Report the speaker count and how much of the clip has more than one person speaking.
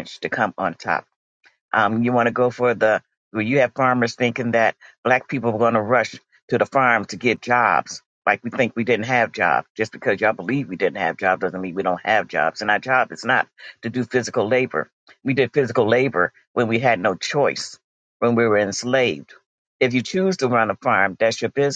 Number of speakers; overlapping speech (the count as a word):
one, no overlap